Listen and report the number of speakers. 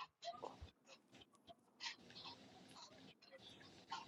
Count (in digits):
0